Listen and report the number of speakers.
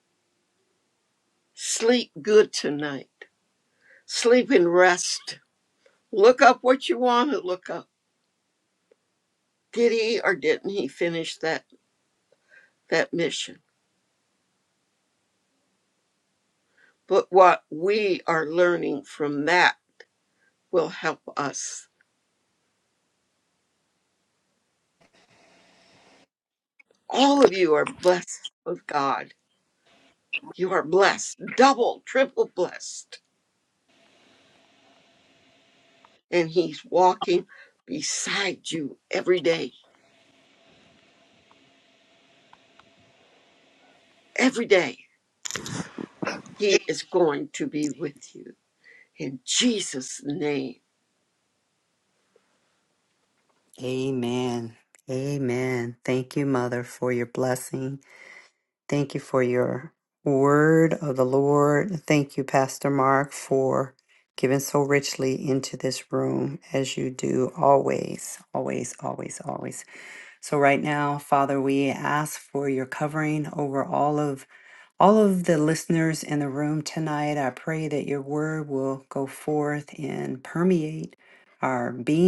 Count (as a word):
two